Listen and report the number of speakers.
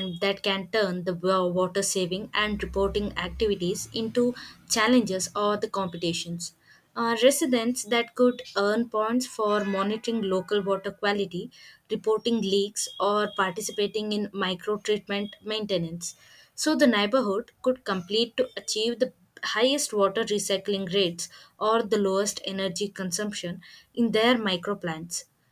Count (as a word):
one